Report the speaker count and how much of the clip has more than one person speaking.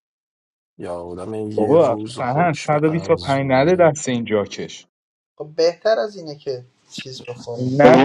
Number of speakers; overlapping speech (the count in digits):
3, about 30%